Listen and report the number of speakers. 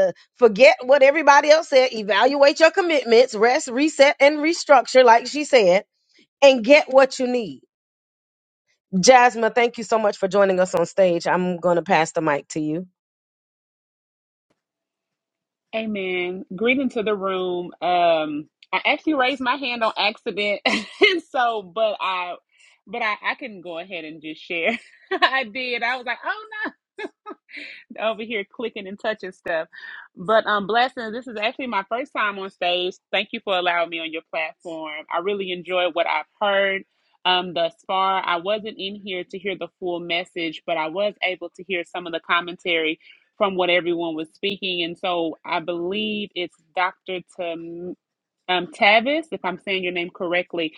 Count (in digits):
2